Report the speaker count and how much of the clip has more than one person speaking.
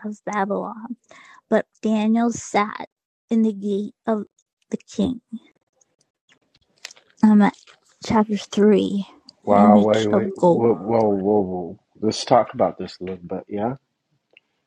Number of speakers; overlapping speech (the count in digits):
2, about 9%